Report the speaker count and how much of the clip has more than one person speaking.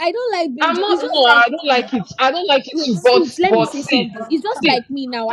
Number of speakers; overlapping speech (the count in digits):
2, about 48%